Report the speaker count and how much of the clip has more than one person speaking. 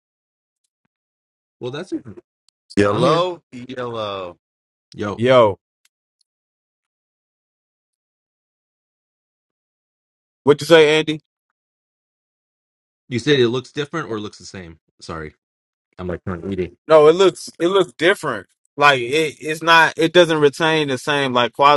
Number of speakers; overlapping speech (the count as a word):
three, about 1%